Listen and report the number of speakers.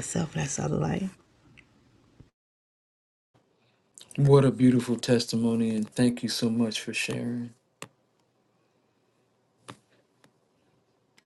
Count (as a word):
two